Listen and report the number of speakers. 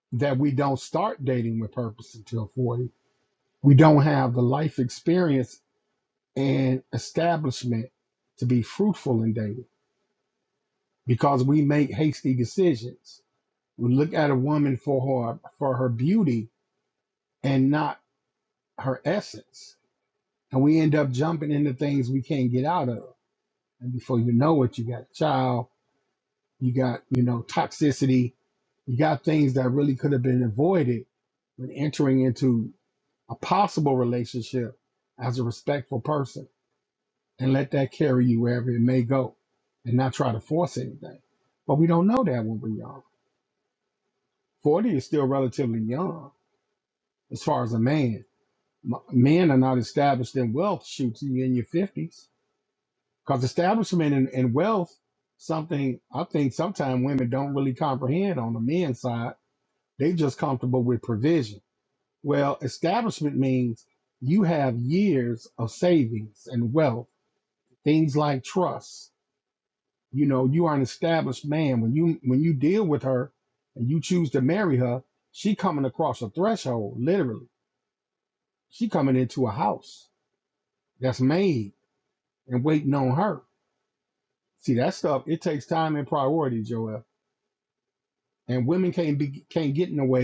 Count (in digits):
1